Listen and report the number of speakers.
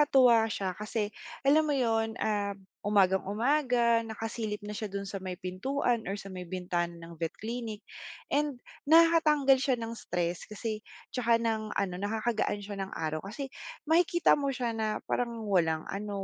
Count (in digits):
1